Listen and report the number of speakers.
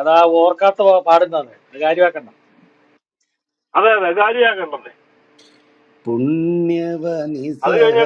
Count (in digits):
3